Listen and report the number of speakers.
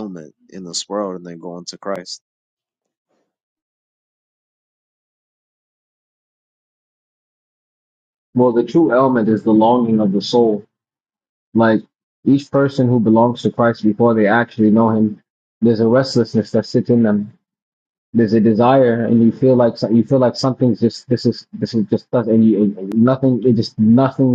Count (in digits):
2